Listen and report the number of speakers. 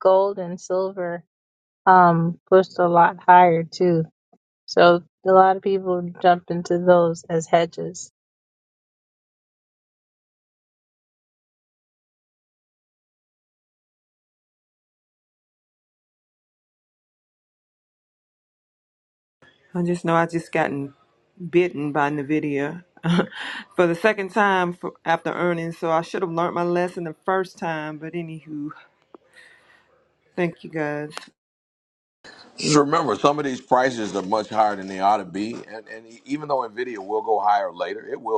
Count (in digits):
3